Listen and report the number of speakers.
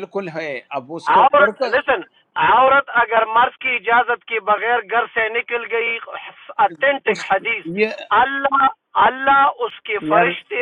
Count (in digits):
2